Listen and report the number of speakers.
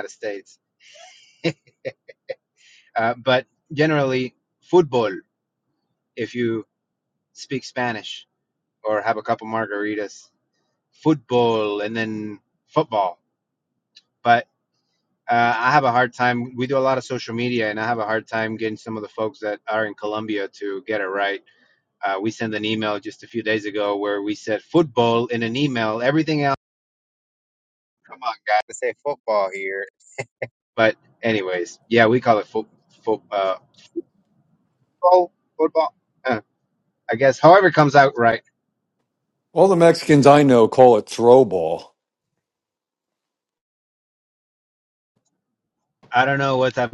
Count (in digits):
2